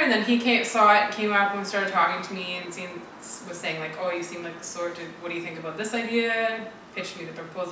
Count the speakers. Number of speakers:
1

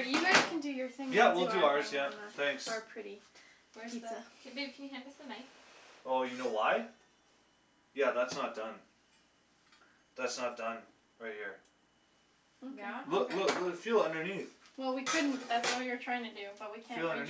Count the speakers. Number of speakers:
3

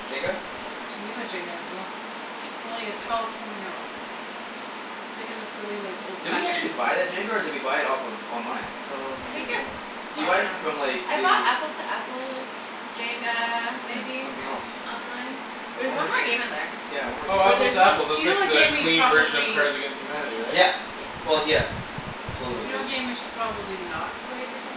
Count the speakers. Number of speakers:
4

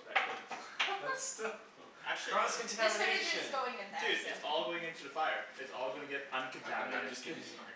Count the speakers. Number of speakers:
3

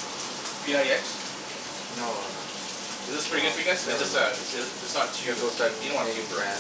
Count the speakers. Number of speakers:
2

